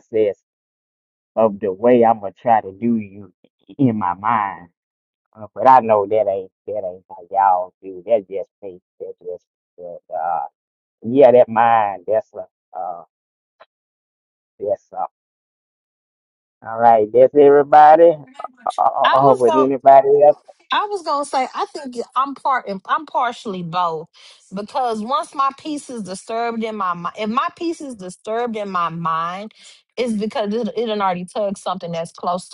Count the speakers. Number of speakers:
2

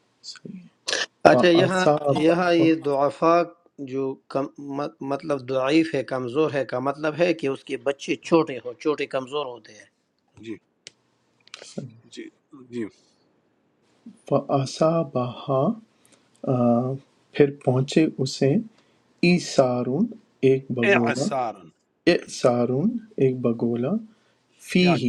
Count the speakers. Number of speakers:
3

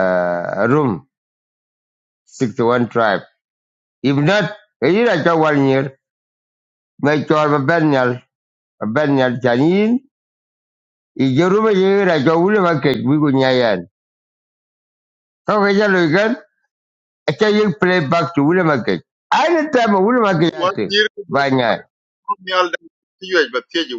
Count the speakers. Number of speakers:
2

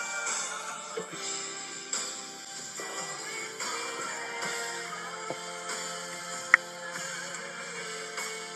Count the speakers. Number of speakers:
0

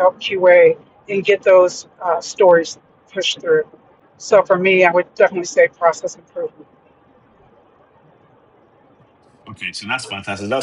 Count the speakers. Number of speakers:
2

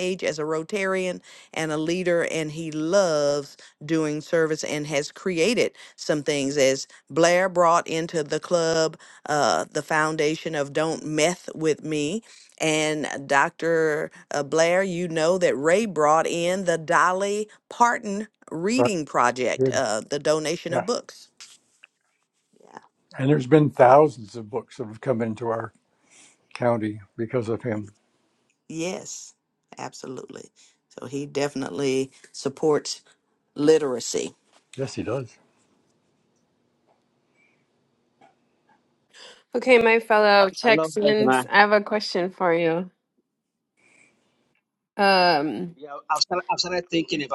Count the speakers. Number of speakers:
4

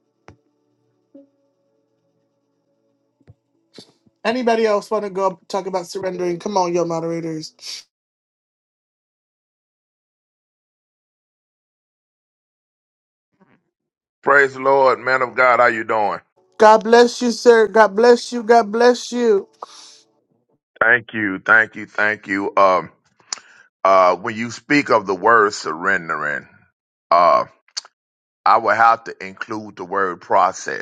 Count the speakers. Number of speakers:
2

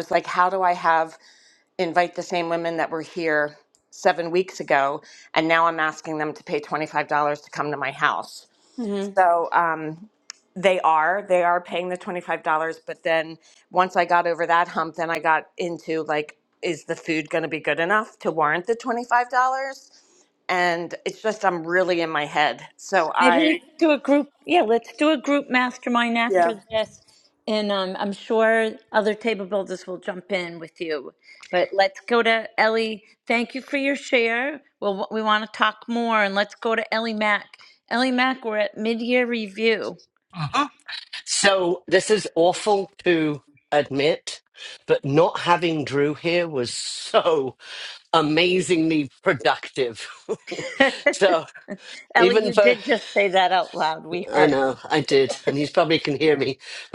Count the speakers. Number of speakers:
3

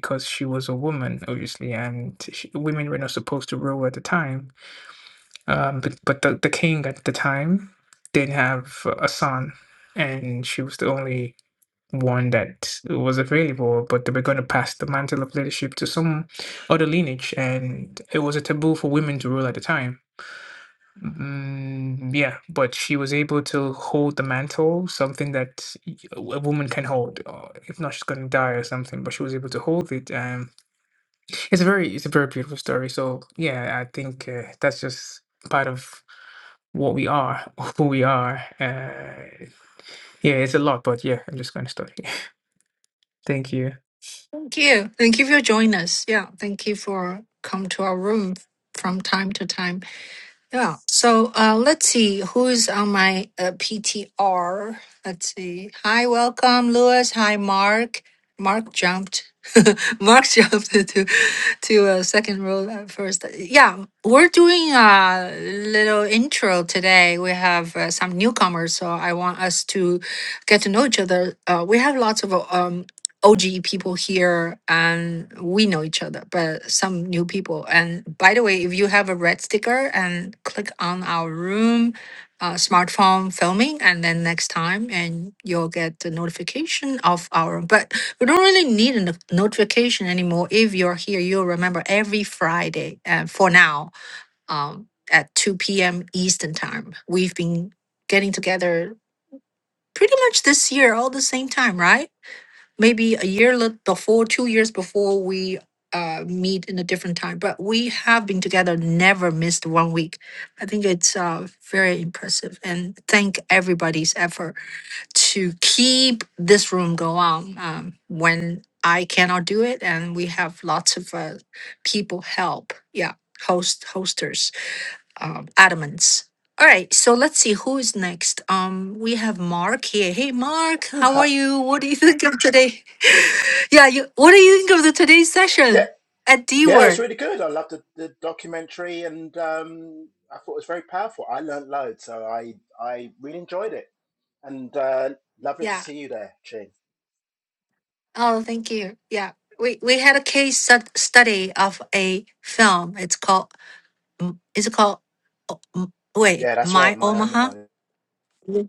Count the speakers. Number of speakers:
3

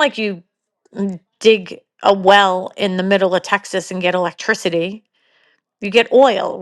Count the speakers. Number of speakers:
1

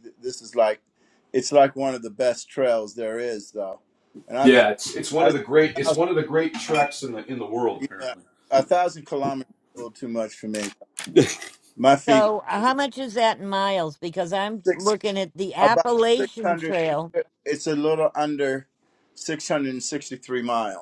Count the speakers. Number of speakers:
3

